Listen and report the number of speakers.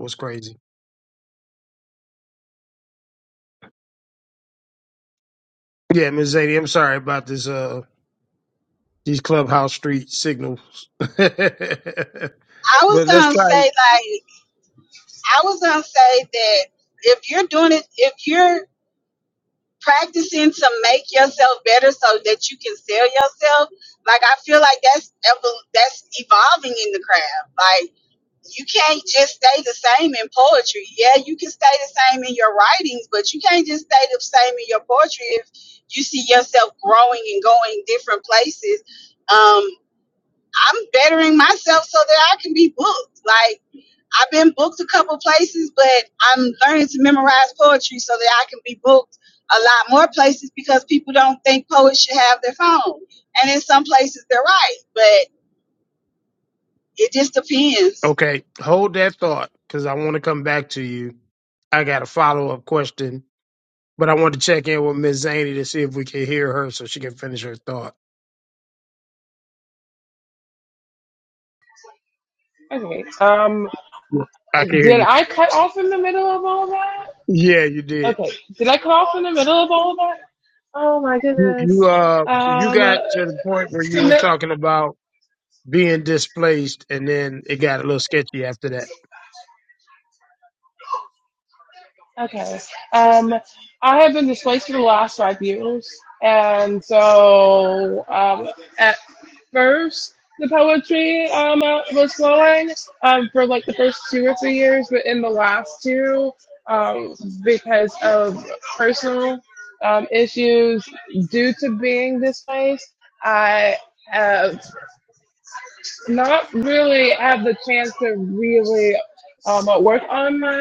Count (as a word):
three